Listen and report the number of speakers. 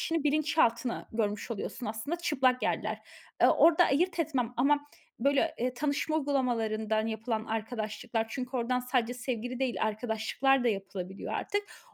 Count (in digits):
1